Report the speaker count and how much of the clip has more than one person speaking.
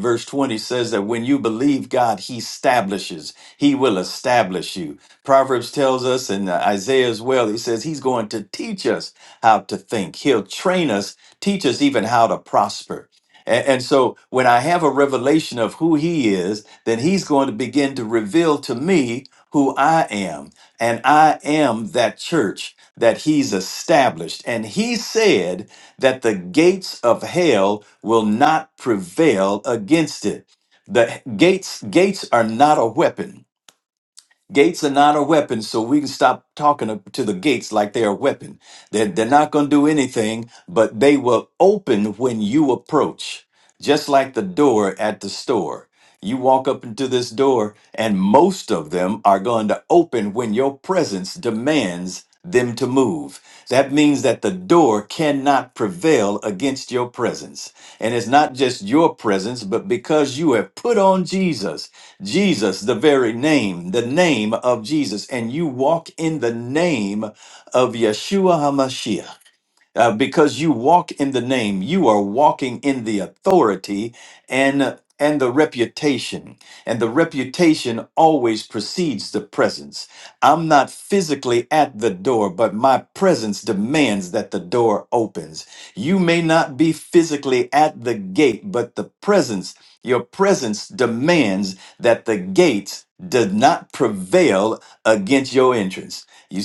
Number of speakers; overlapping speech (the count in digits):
1, no overlap